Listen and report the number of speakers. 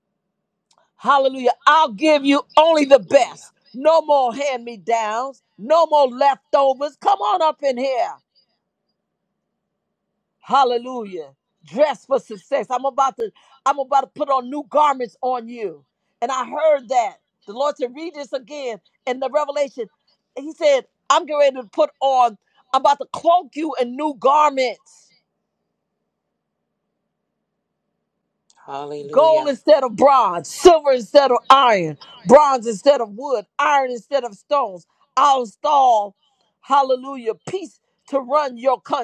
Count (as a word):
two